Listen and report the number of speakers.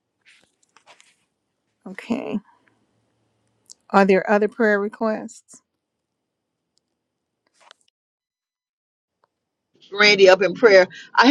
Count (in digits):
2